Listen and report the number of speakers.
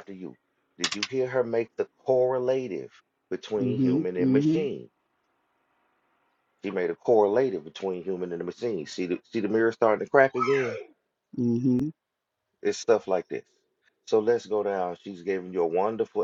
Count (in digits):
2